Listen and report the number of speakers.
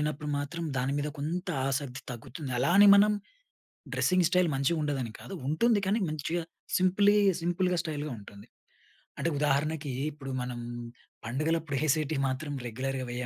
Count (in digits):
1